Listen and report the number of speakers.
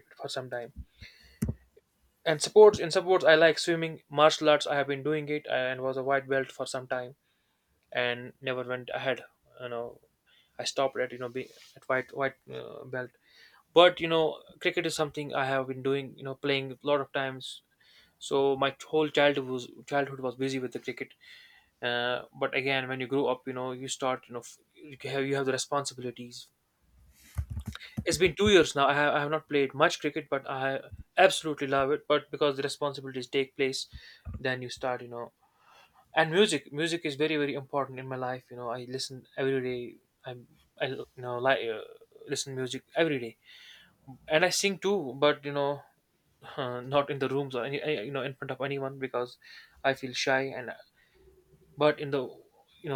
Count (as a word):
one